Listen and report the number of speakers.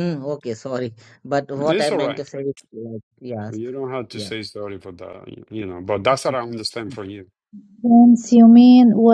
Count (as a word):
three